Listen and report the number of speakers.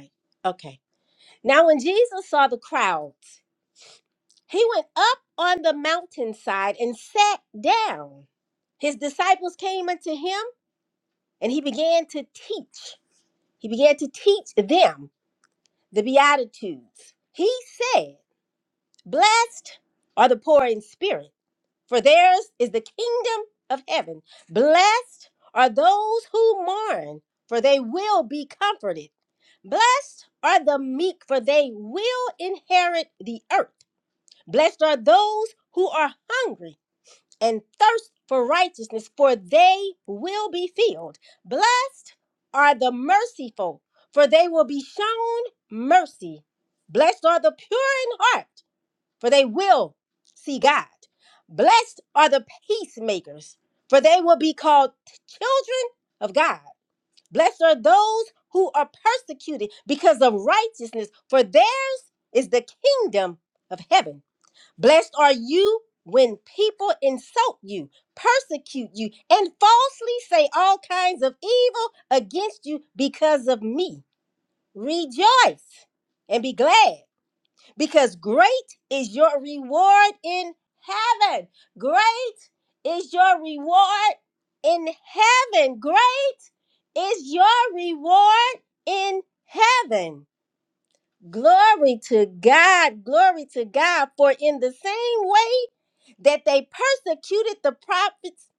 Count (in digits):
1